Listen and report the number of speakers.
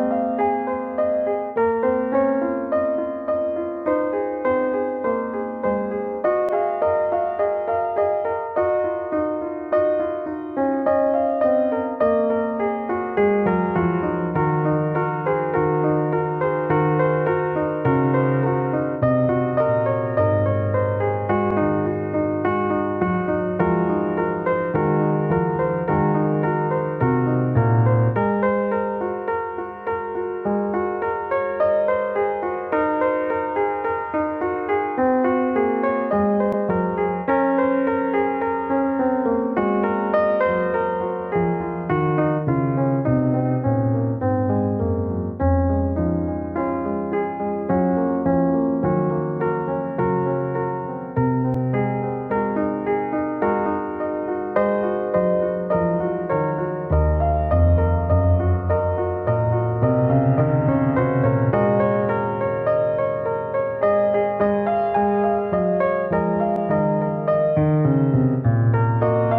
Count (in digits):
0